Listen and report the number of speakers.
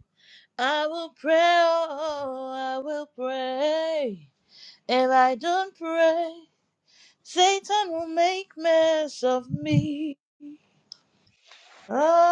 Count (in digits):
1